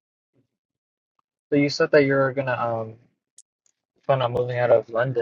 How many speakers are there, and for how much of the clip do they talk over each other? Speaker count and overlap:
one, no overlap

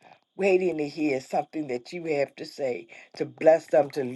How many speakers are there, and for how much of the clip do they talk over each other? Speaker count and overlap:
one, no overlap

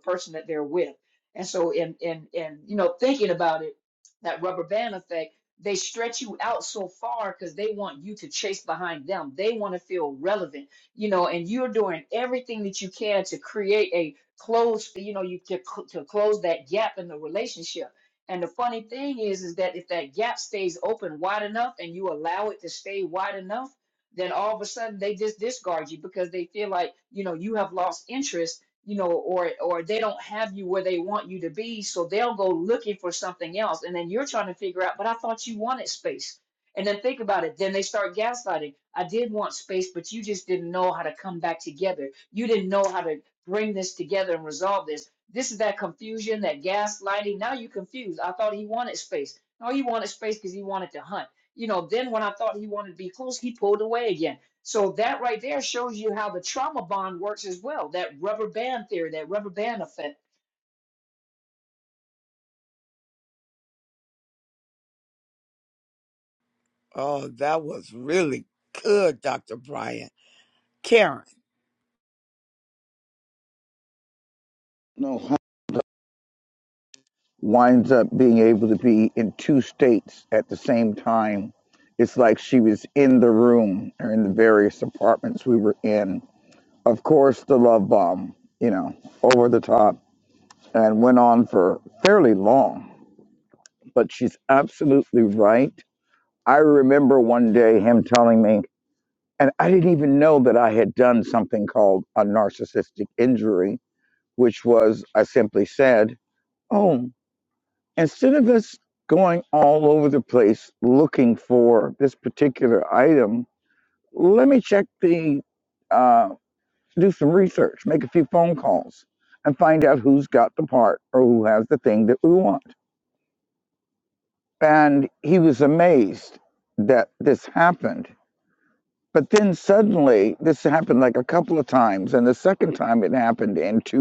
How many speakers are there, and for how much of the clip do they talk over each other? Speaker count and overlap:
three, no overlap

